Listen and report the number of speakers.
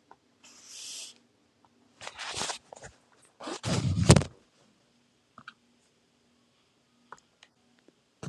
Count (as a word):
zero